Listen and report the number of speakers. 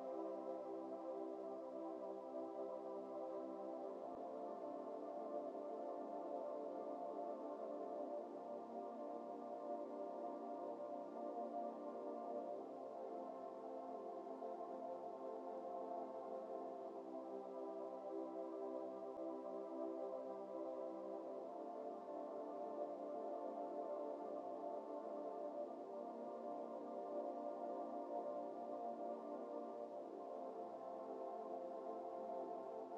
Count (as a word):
zero